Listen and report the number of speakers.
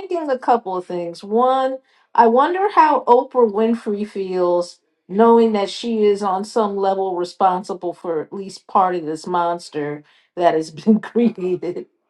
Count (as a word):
one